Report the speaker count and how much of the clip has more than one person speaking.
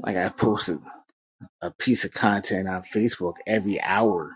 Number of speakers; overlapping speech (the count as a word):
one, no overlap